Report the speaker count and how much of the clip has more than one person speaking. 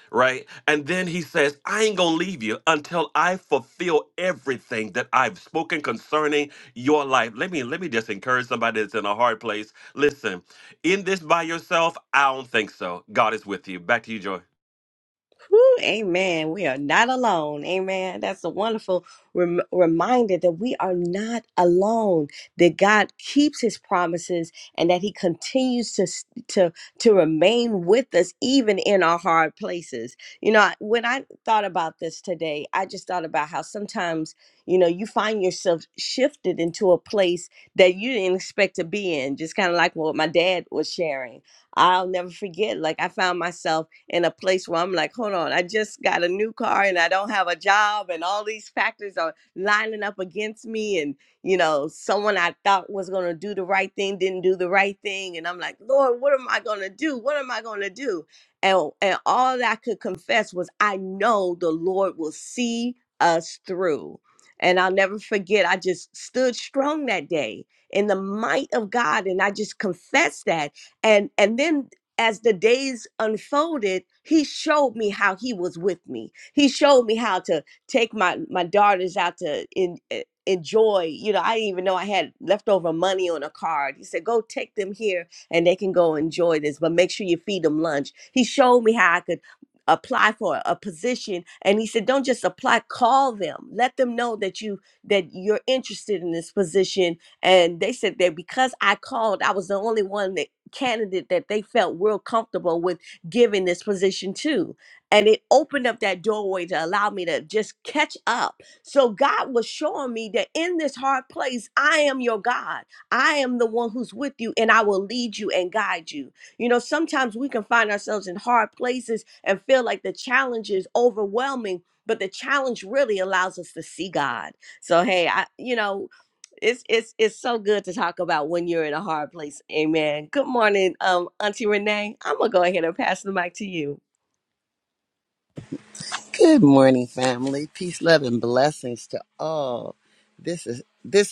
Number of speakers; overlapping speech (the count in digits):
3, no overlap